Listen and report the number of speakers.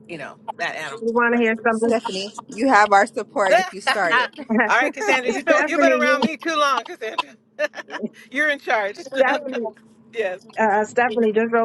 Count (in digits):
3